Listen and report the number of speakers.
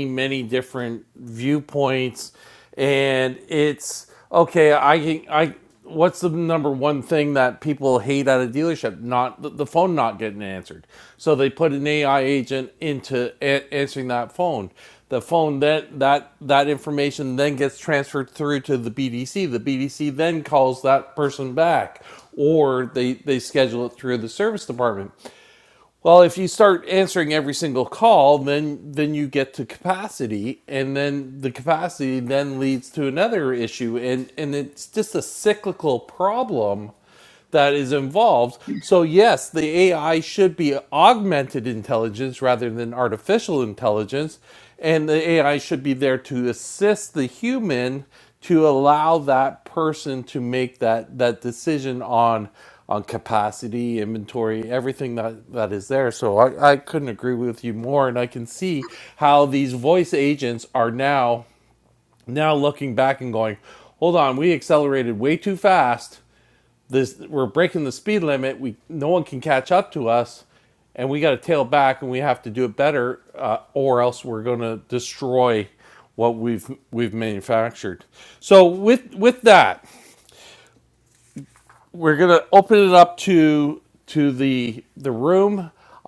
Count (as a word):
one